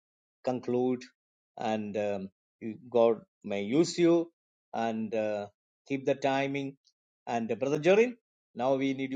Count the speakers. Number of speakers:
one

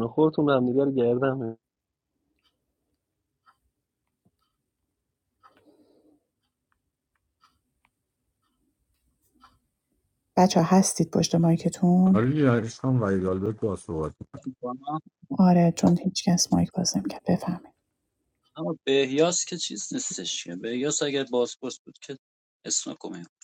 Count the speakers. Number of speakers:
four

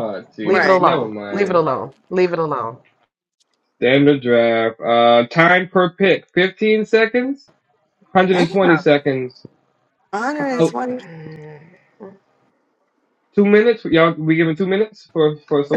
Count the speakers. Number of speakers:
three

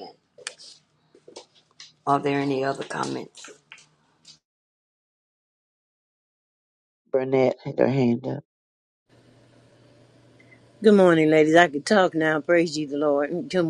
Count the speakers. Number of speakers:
three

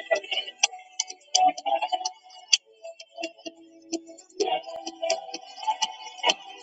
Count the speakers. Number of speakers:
zero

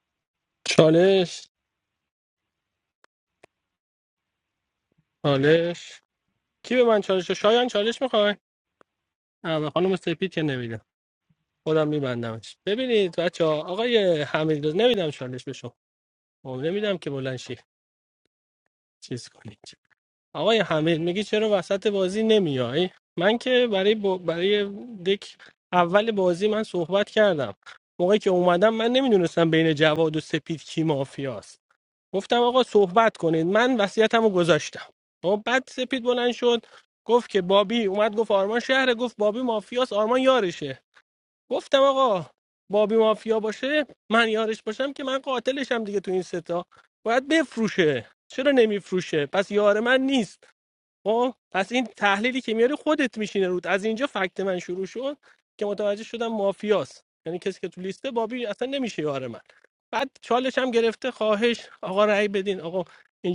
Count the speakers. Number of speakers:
one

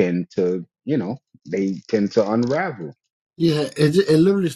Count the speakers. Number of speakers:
two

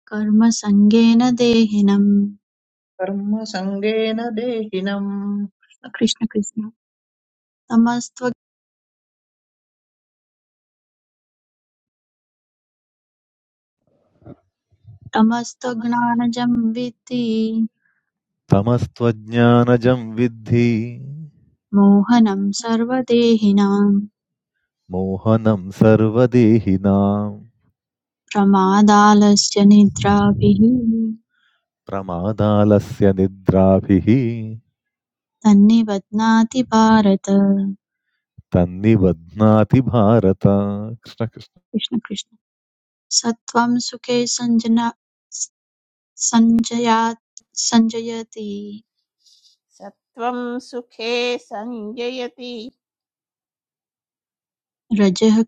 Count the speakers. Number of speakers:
four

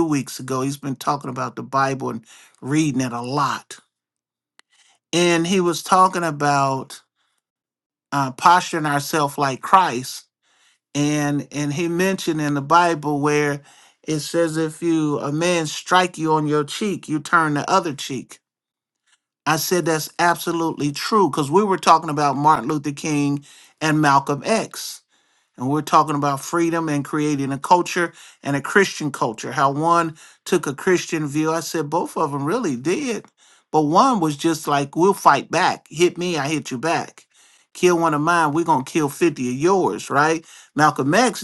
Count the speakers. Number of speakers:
one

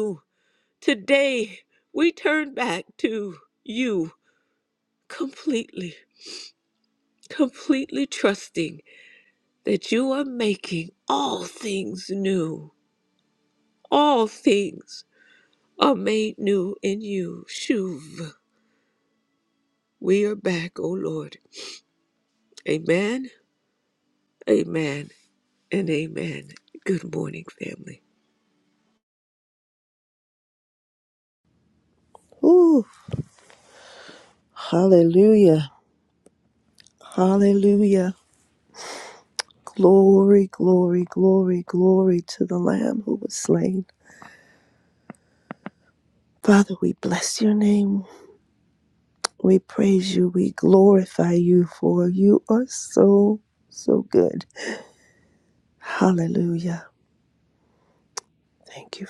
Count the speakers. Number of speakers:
two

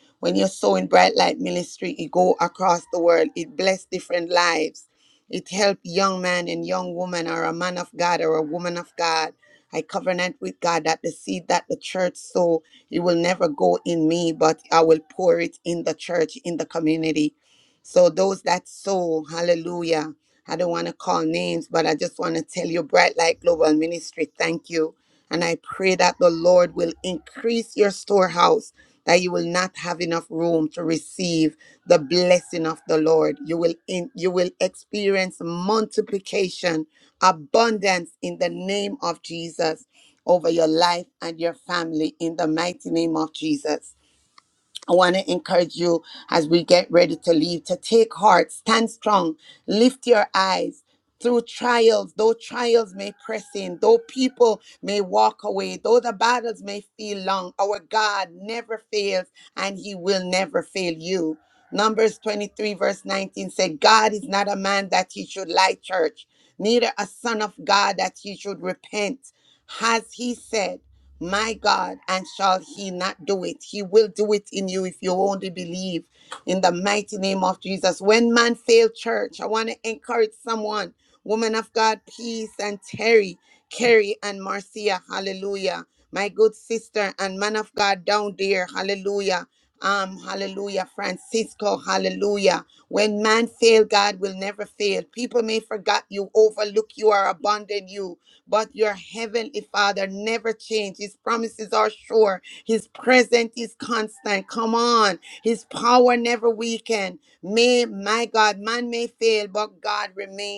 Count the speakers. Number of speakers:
one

